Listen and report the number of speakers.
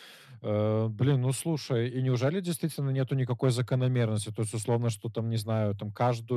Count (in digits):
1